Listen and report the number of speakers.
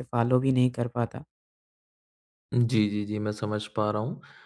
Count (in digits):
2